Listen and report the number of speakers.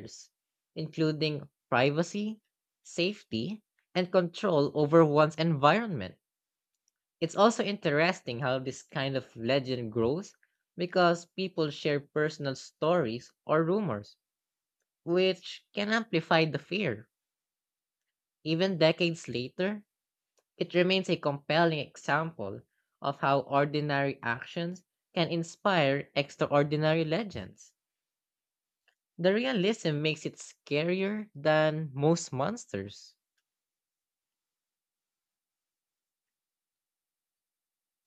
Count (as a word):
one